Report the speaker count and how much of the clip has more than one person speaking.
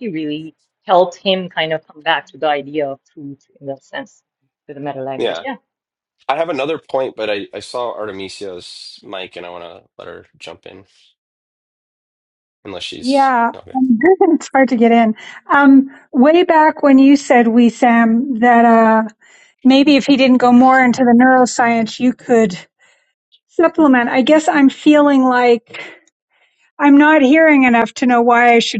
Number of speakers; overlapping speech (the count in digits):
3, about 3%